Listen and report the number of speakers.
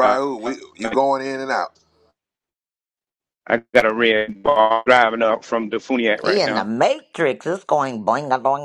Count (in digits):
3